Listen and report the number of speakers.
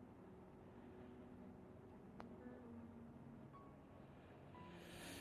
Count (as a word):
zero